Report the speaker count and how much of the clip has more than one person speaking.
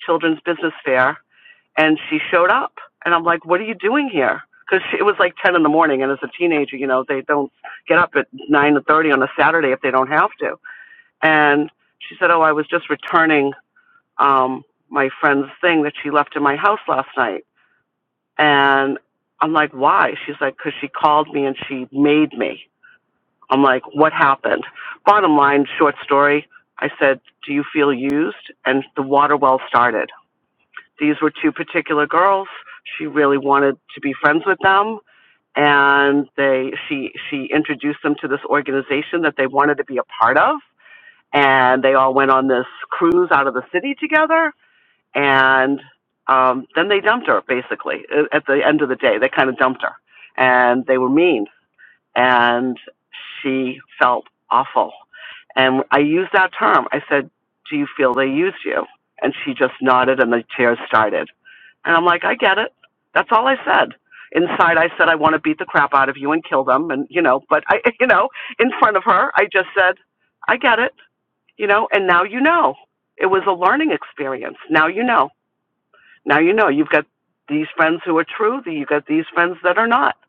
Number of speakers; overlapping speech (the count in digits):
1, no overlap